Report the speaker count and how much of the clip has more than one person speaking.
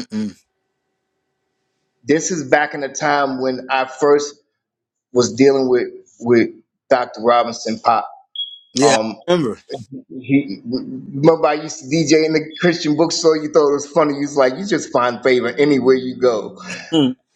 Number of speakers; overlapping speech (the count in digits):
2, about 2%